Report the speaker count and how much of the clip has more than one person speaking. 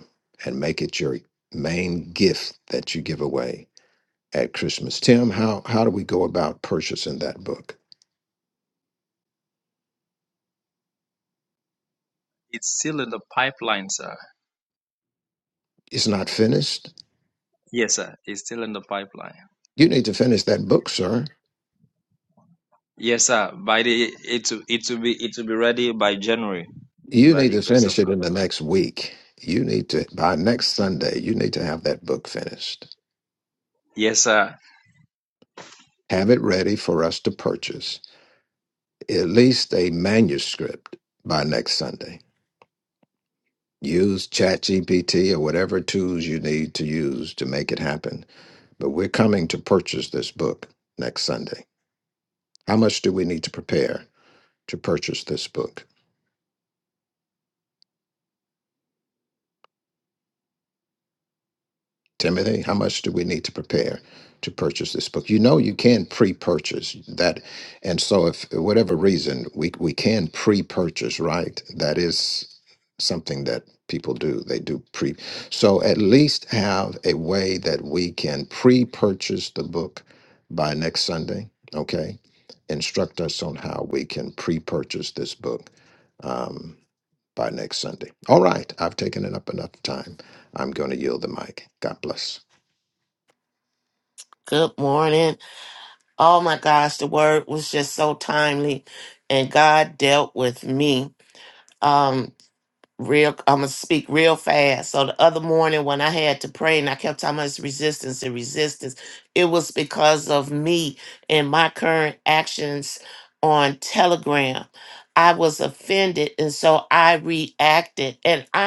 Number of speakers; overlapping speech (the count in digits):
3, about 1%